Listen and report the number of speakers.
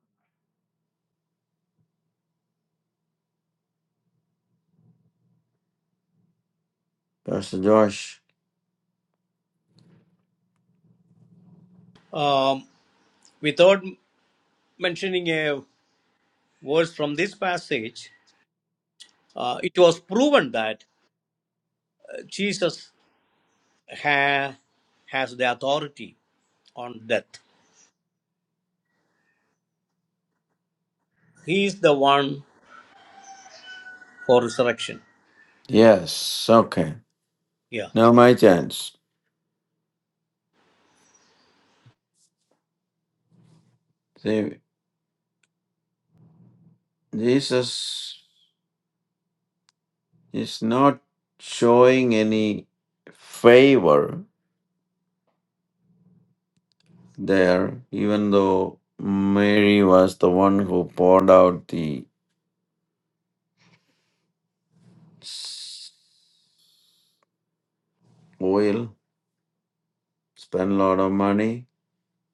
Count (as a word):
two